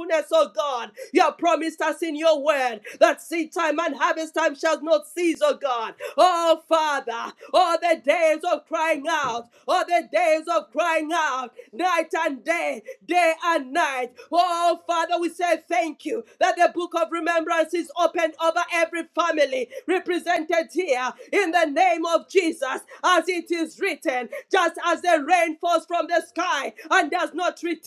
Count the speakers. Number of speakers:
1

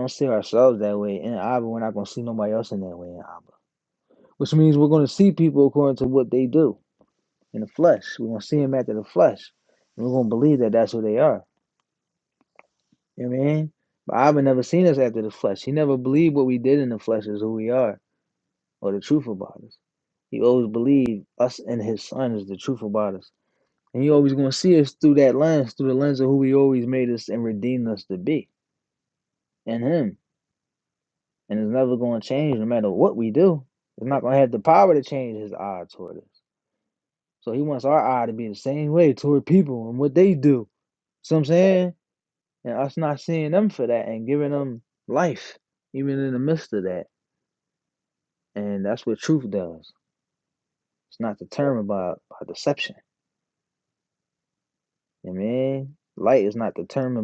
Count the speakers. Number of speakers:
1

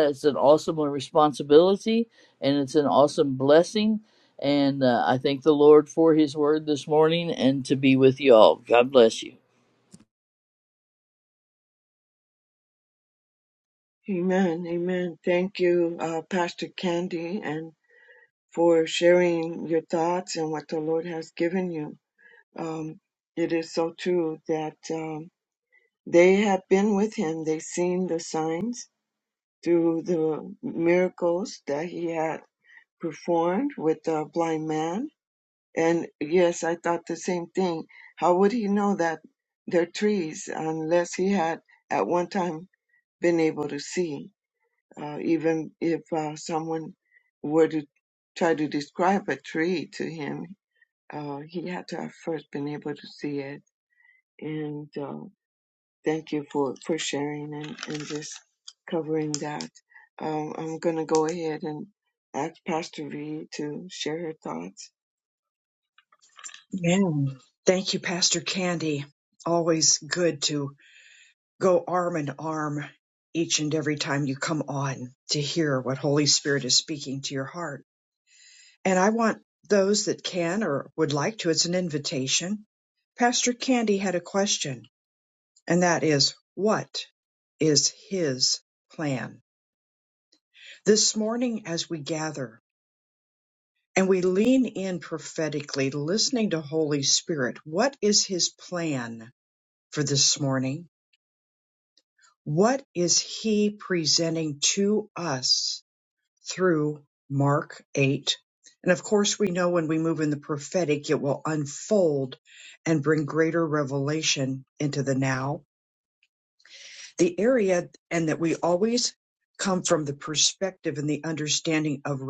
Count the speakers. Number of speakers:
3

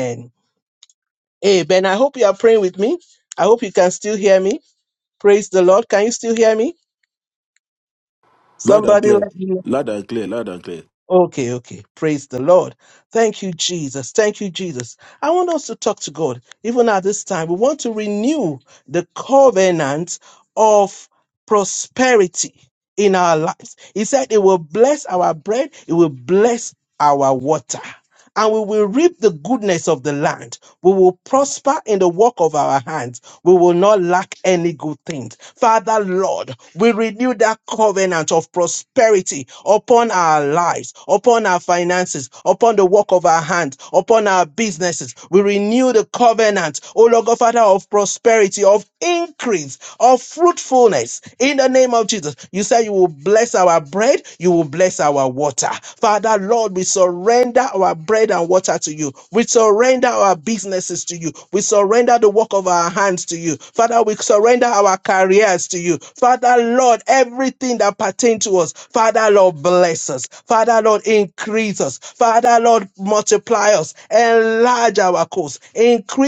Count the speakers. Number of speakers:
2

